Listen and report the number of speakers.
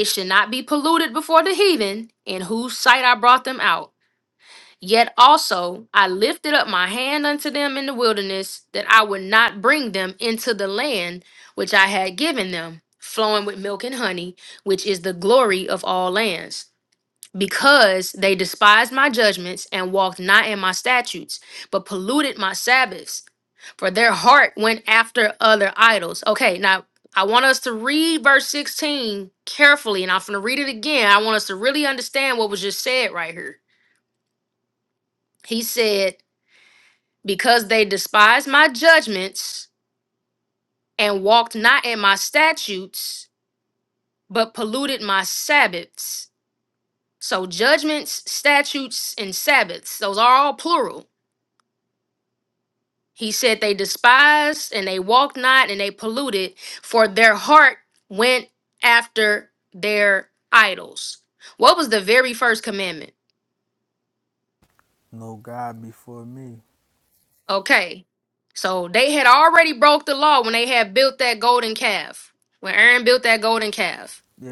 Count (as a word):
two